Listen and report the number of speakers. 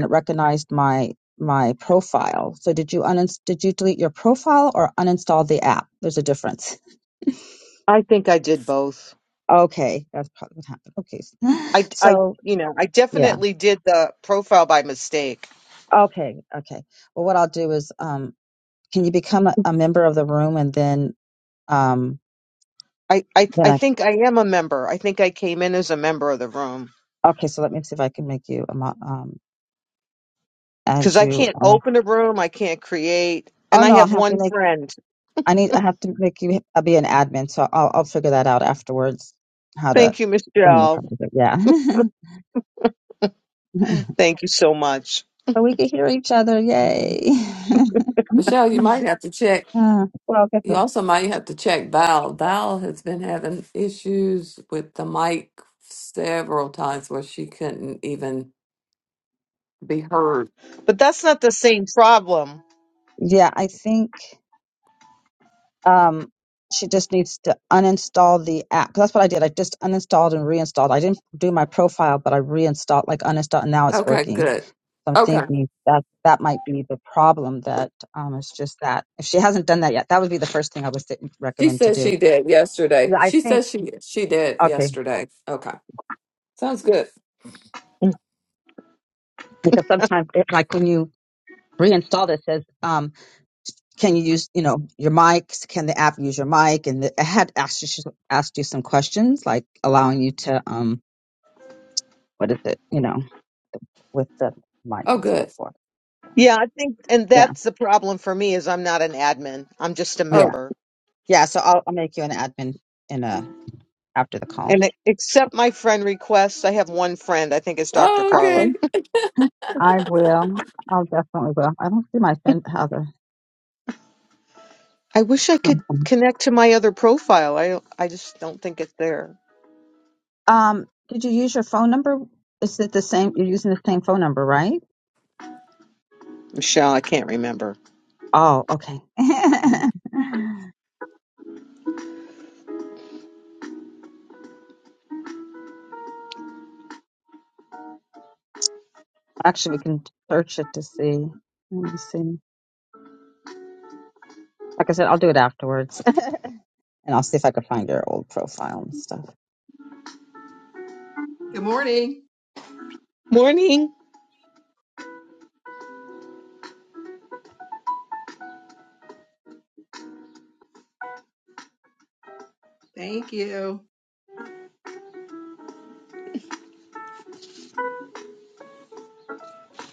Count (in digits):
4